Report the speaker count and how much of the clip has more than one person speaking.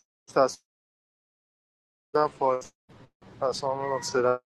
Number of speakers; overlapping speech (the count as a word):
one, no overlap